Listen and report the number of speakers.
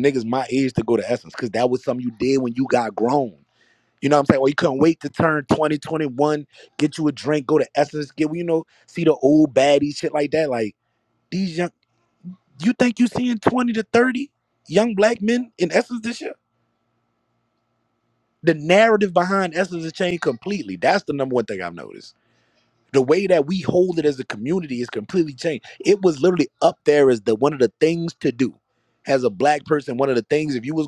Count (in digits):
1